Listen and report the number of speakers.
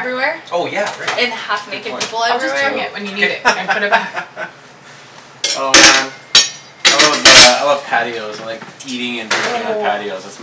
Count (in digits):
4